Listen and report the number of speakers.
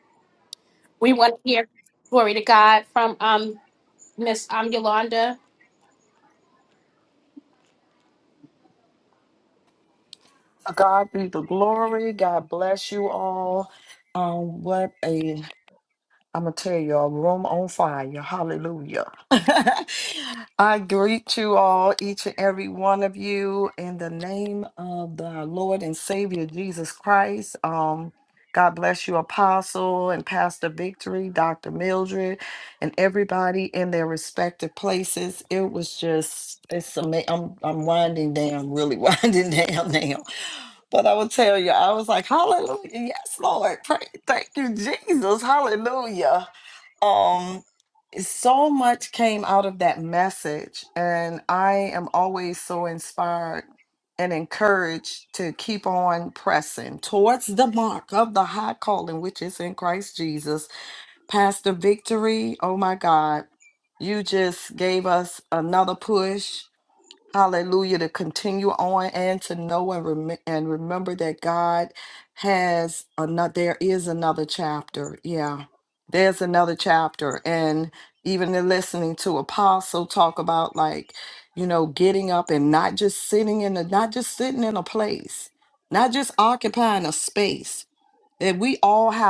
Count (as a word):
two